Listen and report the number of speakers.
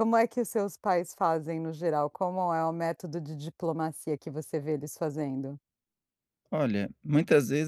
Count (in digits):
2